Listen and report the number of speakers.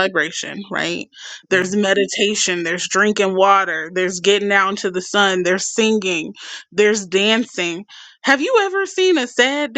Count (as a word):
one